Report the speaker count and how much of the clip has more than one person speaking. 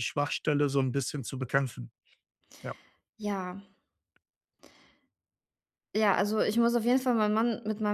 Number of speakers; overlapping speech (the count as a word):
two, no overlap